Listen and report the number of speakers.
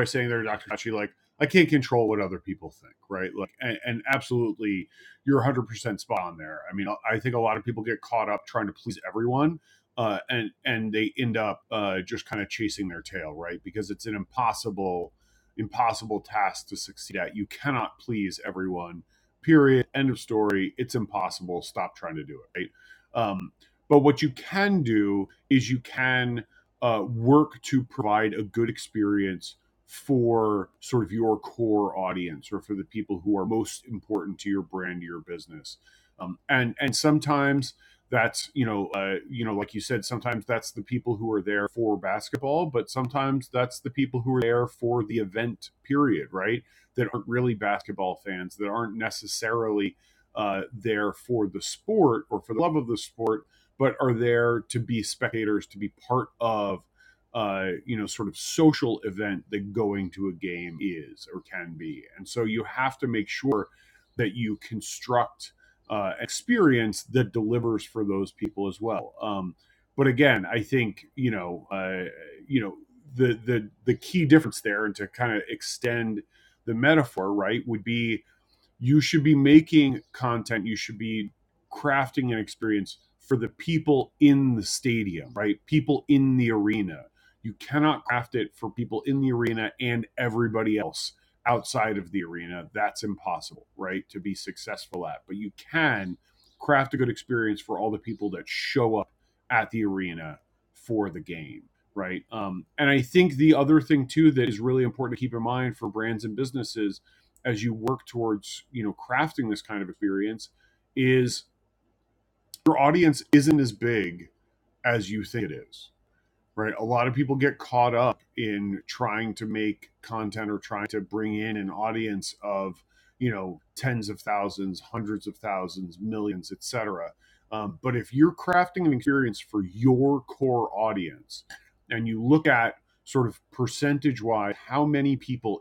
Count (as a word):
one